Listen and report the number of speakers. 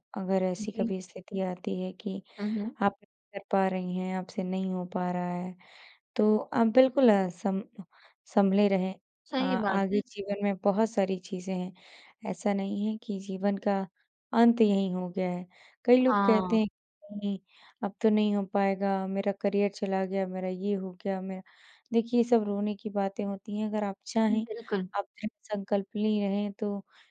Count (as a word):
two